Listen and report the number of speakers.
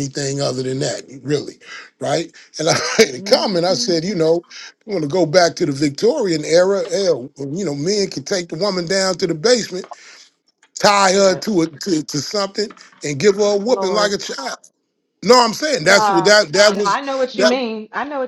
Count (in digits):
2